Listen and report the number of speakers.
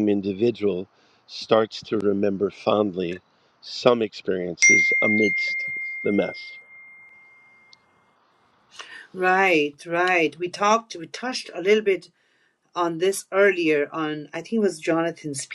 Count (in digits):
2